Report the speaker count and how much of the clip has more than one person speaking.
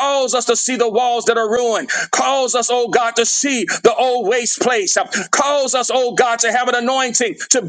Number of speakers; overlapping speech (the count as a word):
one, no overlap